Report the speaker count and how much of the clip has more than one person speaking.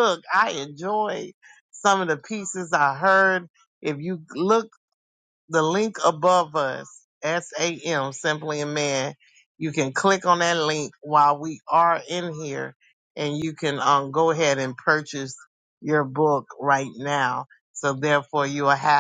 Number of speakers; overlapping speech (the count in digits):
1, no overlap